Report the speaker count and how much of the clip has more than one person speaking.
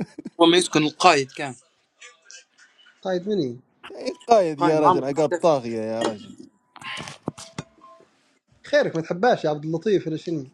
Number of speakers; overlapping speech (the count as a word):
three, about 8%